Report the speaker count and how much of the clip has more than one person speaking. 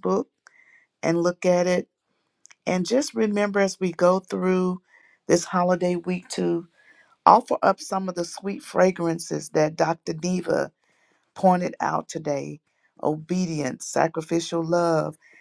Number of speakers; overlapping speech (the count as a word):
one, no overlap